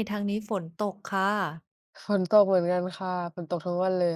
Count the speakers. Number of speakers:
two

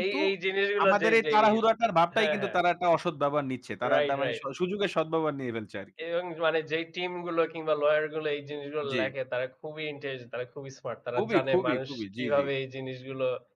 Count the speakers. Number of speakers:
two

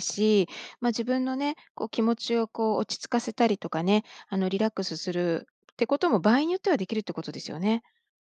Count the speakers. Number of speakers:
one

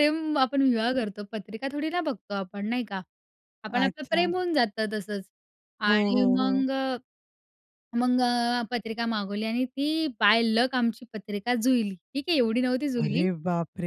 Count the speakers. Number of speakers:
two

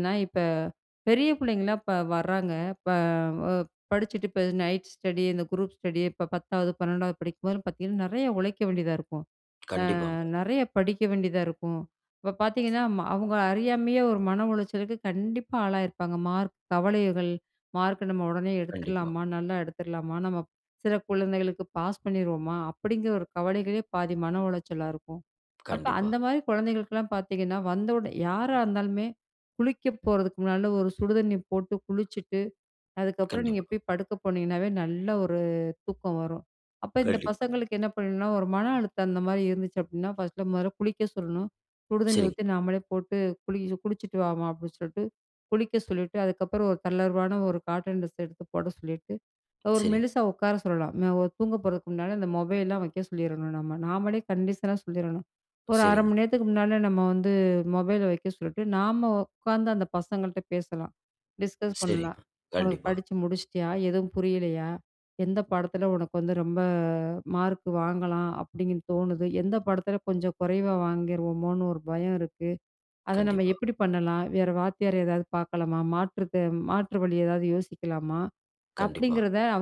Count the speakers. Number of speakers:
two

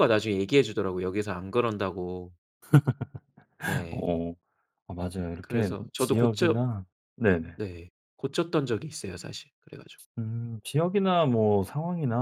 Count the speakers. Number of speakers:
two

